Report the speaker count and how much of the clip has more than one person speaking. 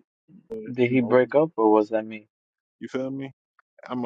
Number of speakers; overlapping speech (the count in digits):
2, about 12%